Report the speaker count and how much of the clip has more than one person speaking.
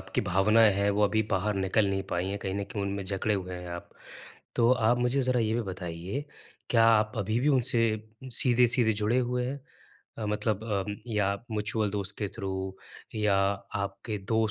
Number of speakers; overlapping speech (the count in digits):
1, no overlap